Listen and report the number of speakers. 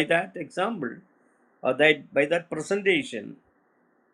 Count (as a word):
one